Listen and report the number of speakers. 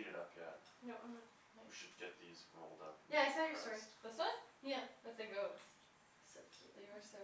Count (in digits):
3